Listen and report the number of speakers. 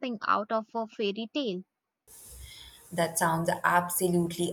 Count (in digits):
2